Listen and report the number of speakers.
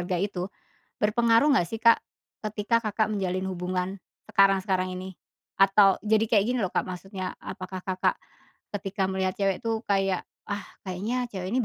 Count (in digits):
1